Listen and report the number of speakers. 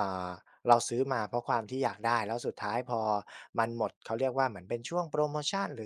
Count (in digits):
1